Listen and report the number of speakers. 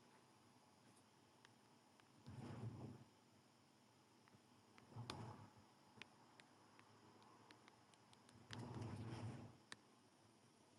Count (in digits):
0